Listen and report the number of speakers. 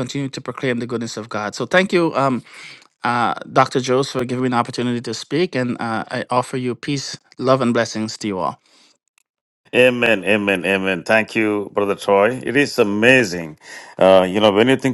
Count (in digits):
2